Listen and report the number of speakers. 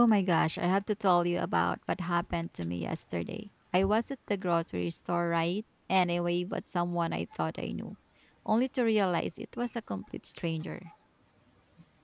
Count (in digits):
1